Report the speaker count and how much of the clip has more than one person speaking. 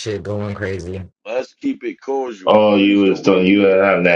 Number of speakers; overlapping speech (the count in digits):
3, about 31%